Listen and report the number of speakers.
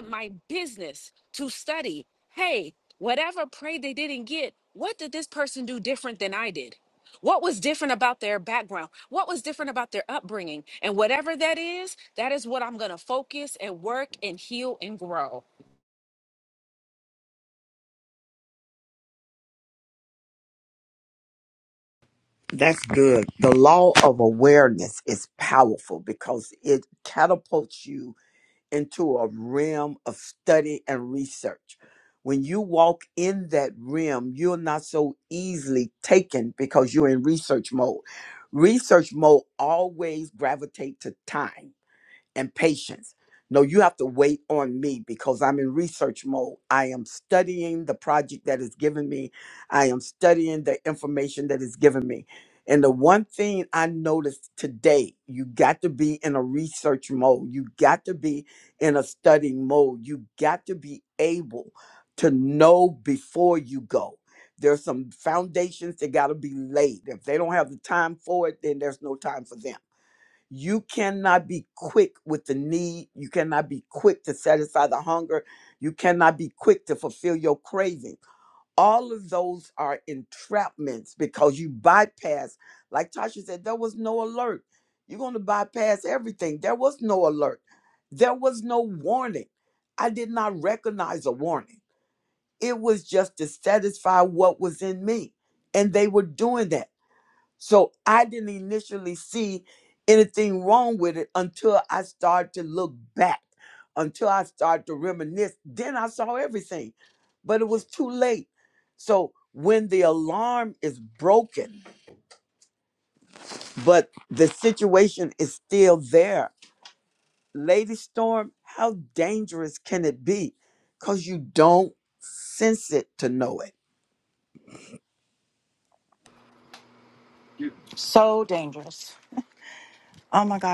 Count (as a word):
three